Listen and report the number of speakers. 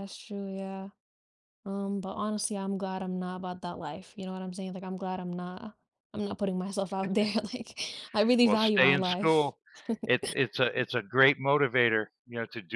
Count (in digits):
2